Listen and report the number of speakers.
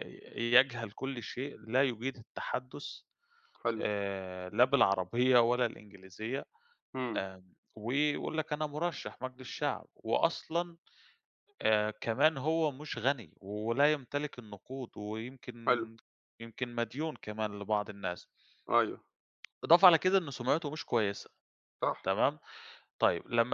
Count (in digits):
2